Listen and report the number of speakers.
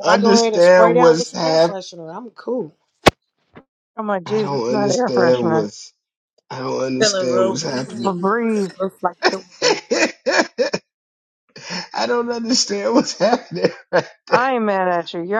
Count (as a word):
four